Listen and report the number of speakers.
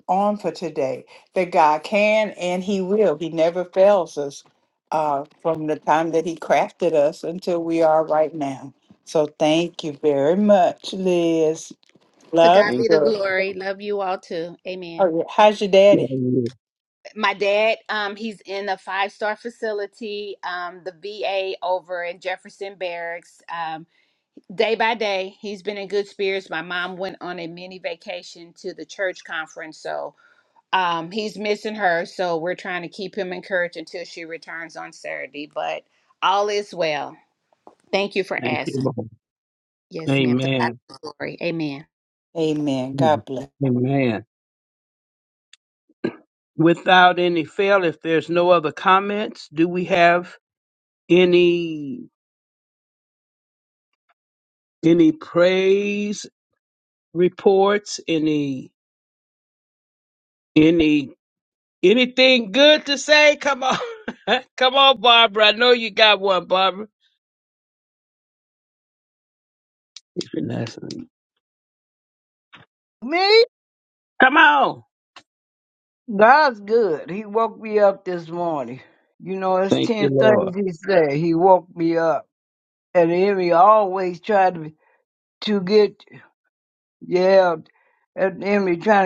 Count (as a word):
four